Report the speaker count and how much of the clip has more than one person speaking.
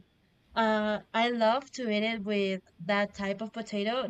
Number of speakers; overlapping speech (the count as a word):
one, no overlap